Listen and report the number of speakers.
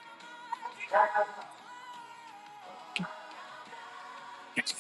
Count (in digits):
0